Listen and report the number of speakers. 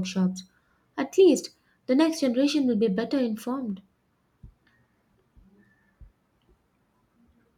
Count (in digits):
1